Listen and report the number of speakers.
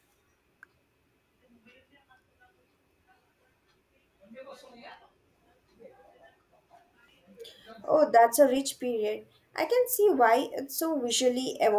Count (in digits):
1